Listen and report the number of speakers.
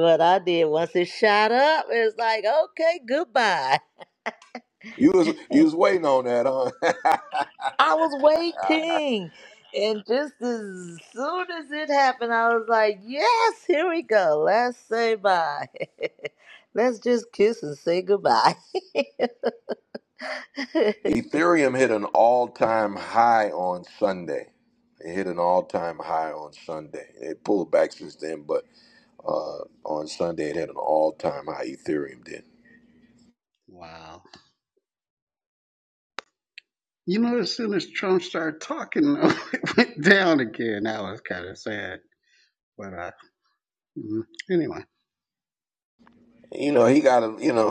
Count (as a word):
three